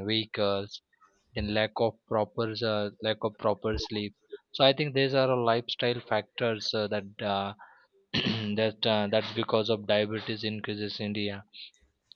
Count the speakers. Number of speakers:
one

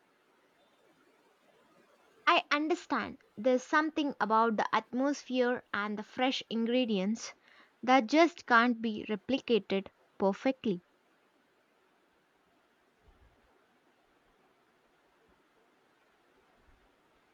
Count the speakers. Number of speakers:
one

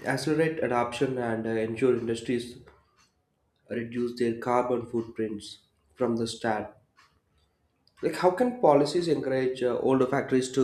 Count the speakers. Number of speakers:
one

